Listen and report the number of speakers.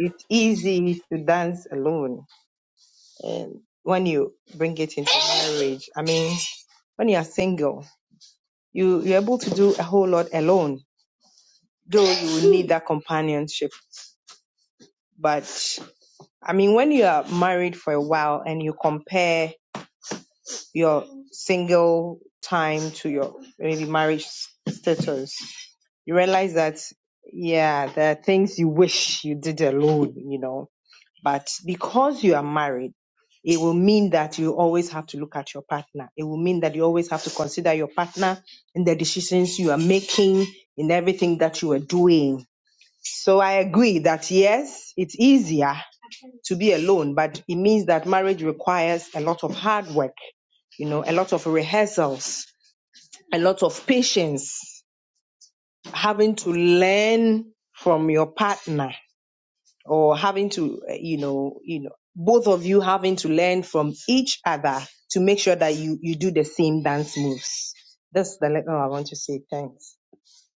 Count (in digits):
1